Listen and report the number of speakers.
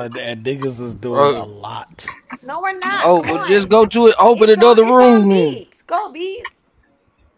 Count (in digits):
3